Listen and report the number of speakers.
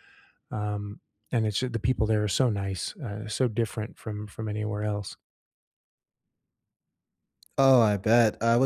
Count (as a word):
two